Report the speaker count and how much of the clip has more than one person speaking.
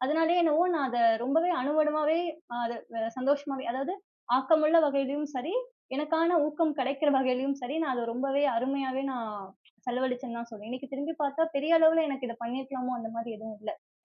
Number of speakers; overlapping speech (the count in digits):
1, no overlap